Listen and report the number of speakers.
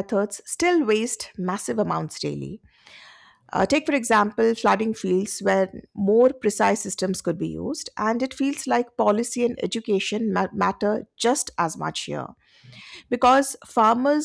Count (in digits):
1